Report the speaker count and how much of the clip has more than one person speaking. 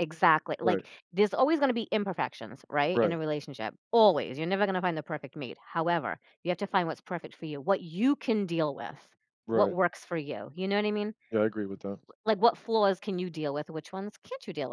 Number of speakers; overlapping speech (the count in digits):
2, about 4%